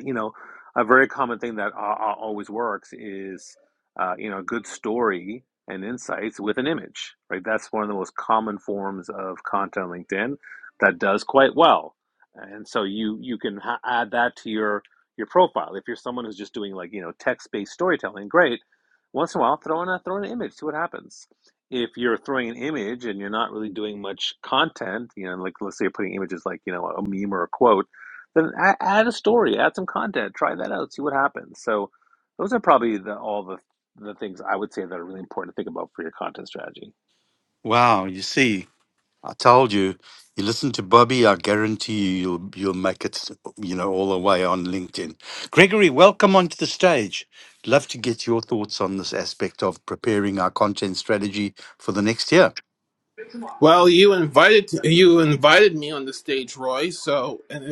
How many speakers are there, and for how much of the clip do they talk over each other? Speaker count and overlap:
3, no overlap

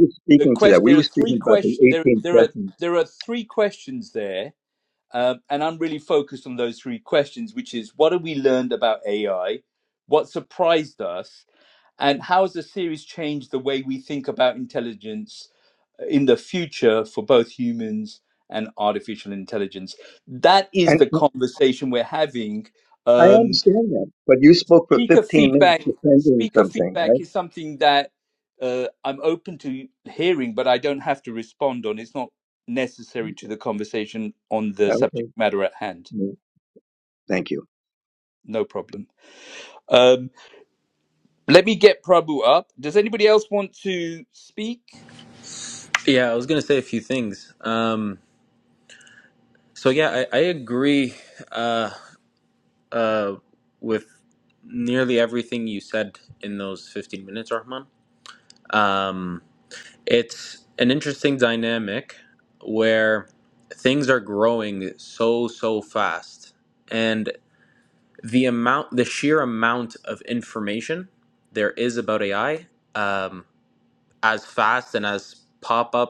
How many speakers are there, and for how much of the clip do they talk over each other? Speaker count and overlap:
3, about 6%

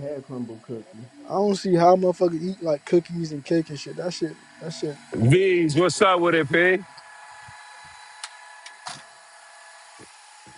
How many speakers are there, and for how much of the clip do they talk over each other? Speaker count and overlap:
3, about 1%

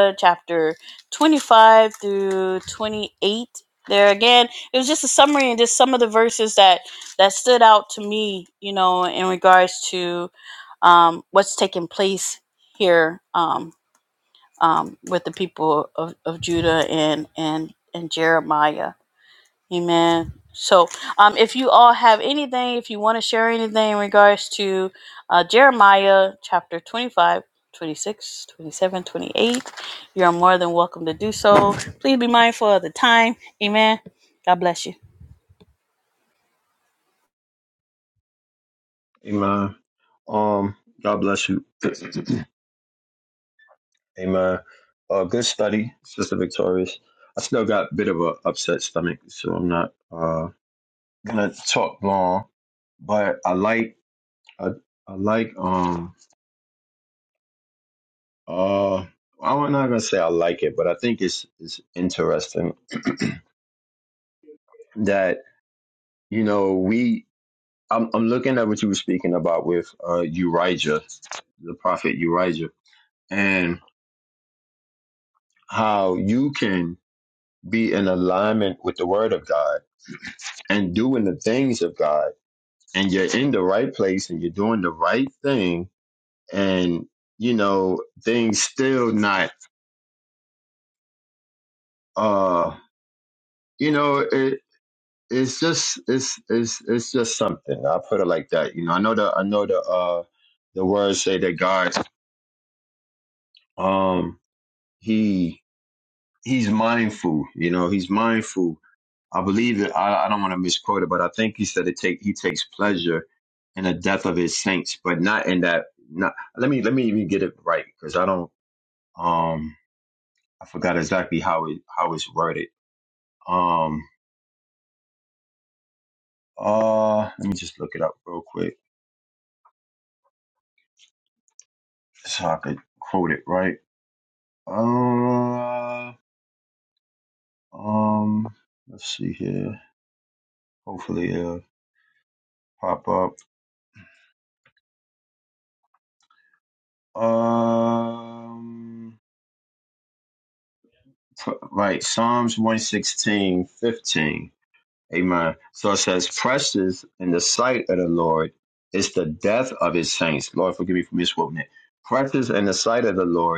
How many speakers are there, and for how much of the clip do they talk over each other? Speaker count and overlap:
2, no overlap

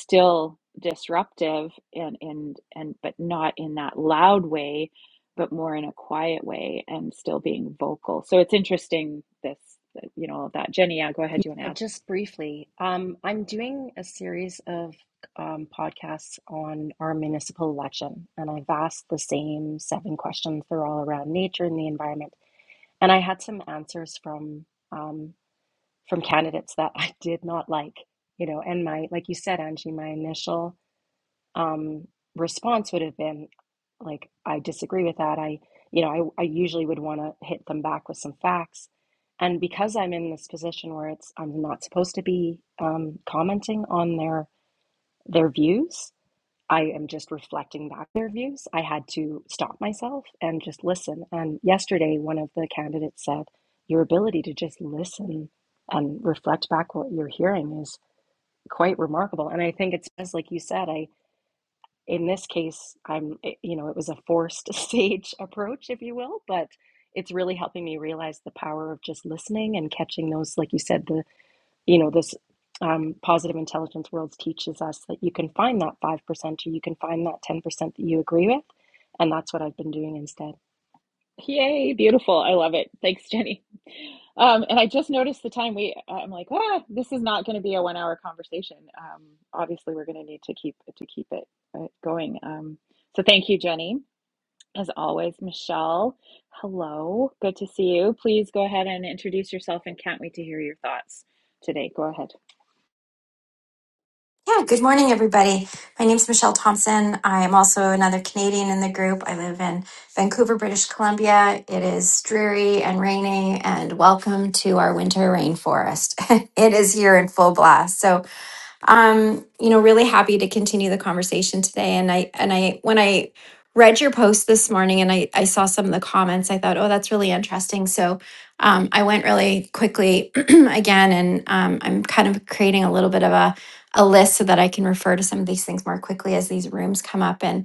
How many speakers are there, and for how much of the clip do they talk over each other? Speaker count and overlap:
3, under 1%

